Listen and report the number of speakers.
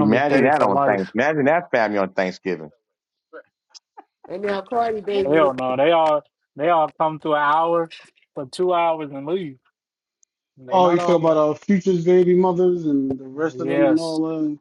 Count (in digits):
4